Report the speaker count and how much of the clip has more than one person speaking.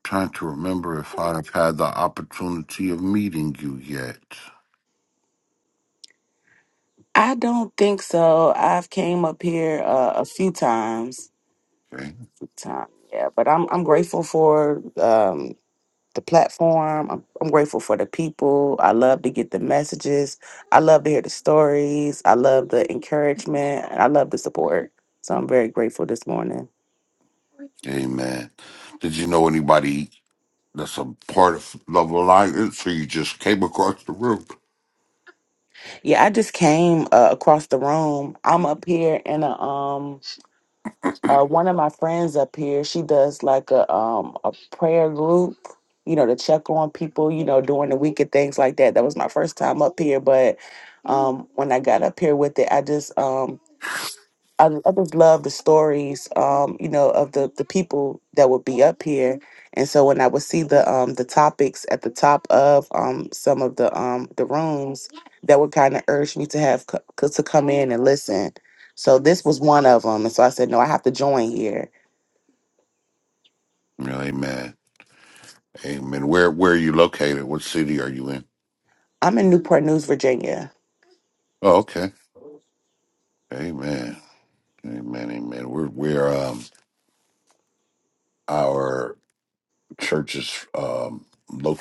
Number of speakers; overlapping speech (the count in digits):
2, no overlap